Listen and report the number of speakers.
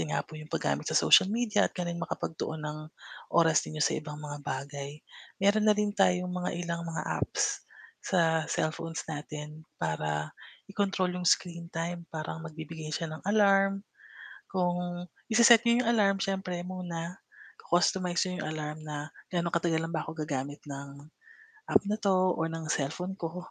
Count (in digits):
1